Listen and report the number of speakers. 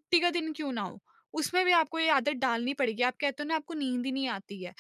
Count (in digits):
1